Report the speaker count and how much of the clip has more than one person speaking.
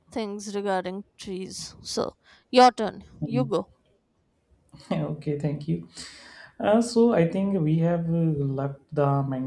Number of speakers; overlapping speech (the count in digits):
2, about 3%